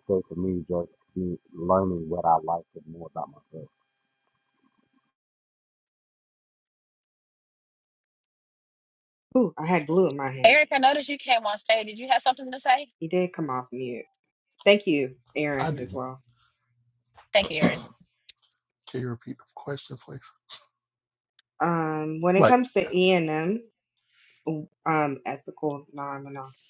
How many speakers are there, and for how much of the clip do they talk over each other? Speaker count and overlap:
four, about 2%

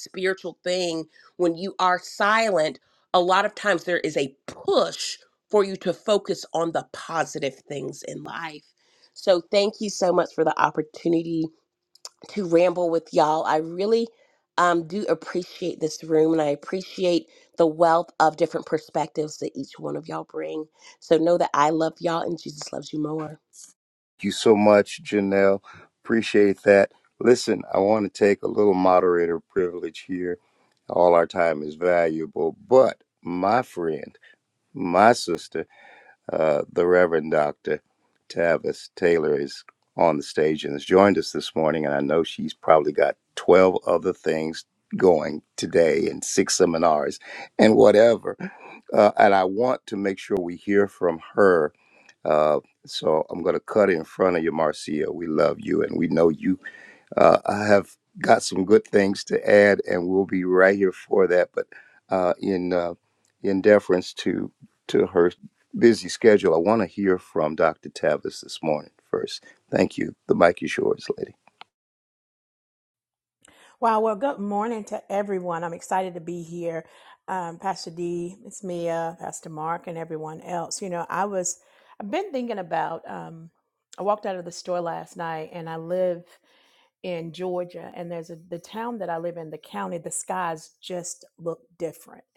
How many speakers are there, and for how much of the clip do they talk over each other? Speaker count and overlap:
three, no overlap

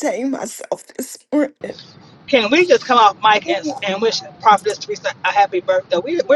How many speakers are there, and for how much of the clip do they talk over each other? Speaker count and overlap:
two, about 7%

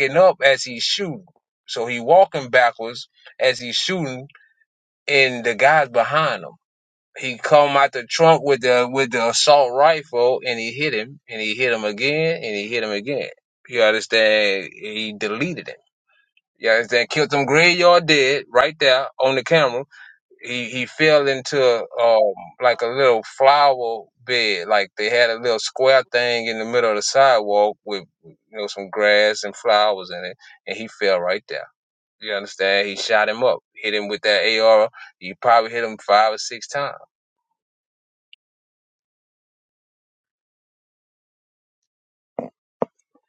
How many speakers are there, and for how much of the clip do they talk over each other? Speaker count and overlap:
one, no overlap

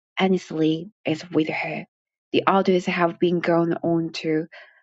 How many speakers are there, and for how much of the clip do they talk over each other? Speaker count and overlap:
one, no overlap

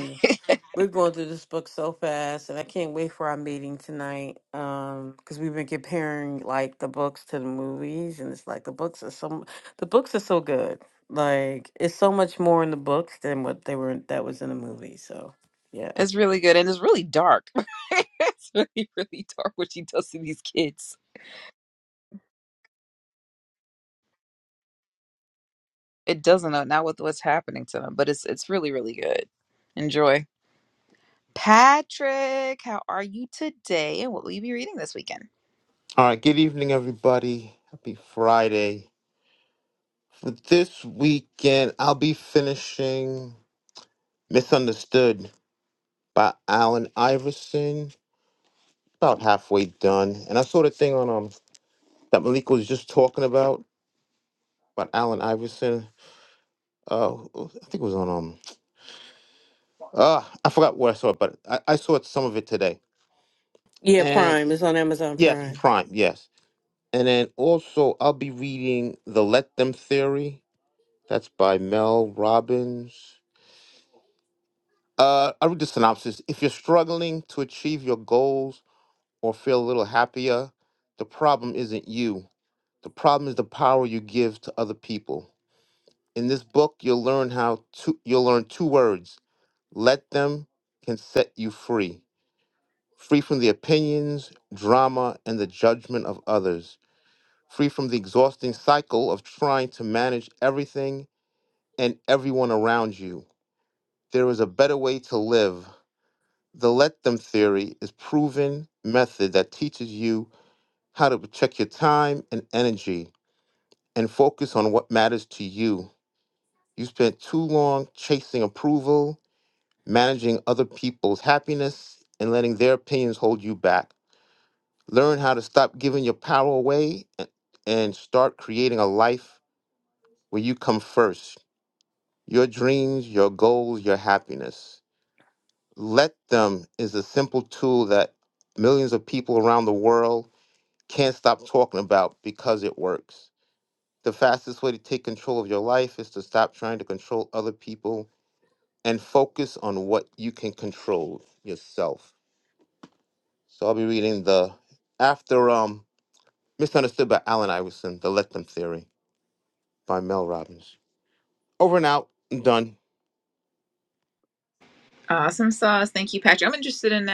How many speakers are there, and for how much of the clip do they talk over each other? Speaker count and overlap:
three, about 1%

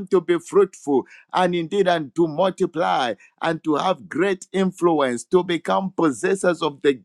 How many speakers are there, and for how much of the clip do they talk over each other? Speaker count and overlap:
one, no overlap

